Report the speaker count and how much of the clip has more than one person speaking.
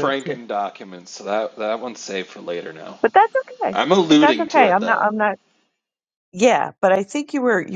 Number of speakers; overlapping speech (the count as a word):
two, about 17%